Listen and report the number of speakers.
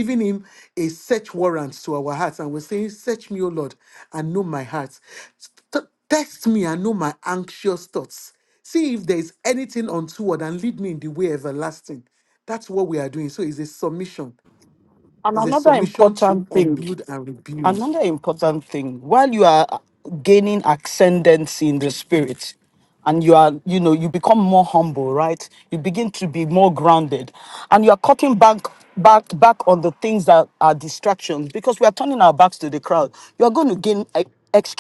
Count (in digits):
2